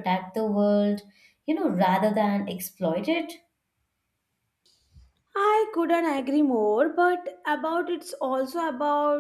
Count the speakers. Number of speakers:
2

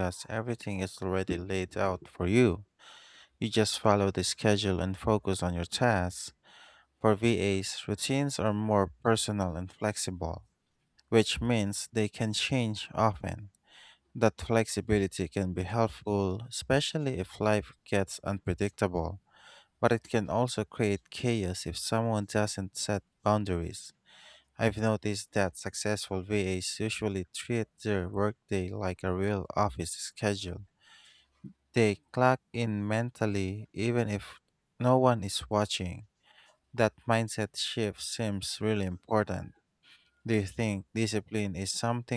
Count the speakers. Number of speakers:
1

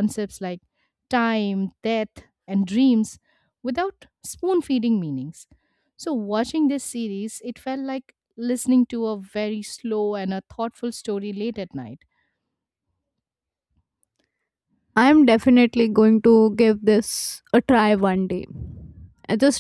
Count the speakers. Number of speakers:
2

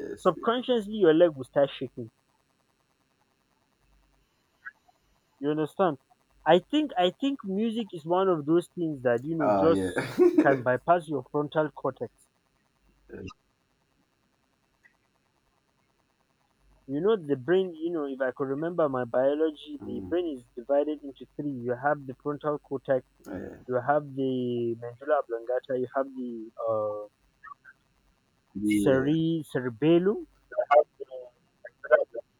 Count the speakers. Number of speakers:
2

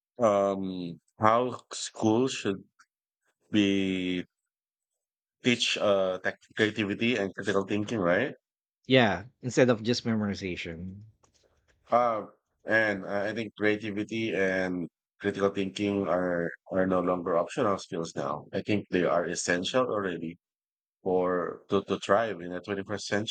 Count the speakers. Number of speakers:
2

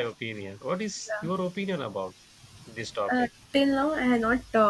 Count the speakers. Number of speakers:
2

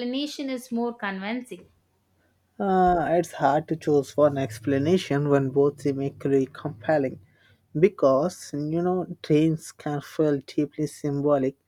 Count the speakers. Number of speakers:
2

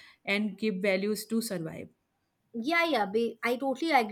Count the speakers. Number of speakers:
2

